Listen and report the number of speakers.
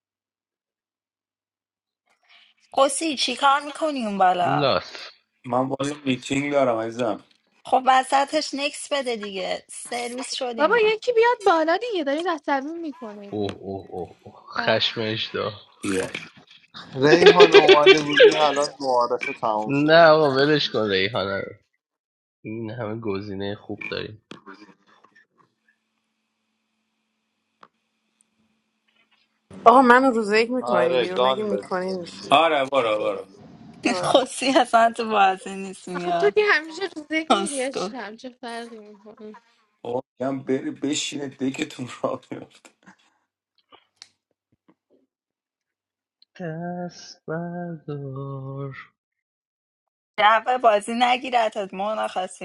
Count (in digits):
6